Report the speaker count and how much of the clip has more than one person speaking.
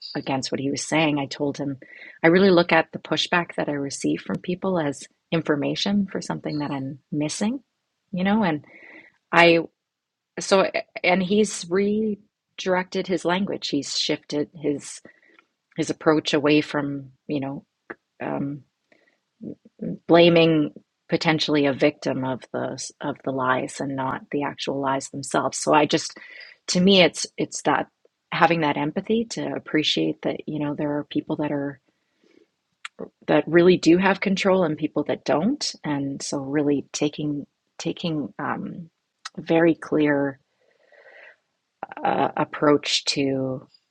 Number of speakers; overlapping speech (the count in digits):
1, no overlap